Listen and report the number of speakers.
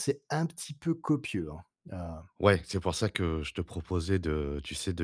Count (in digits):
2